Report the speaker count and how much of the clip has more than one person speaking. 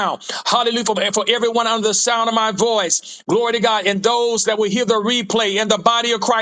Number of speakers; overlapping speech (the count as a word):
one, no overlap